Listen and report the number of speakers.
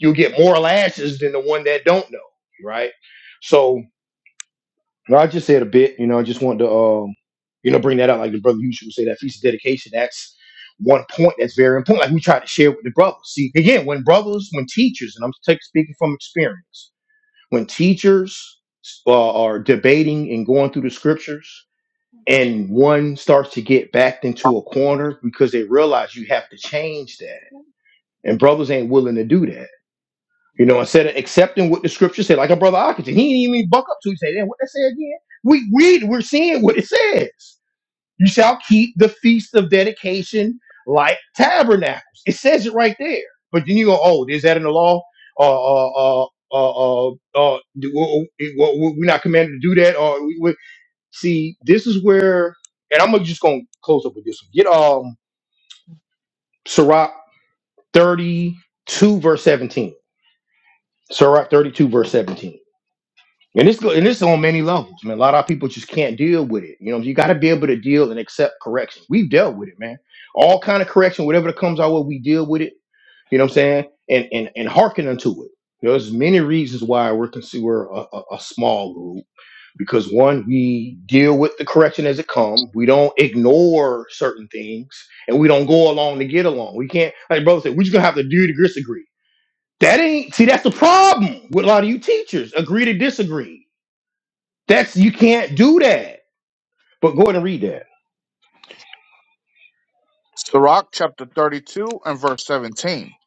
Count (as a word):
two